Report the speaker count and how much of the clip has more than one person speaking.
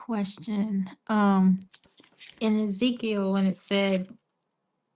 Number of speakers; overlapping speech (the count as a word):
one, no overlap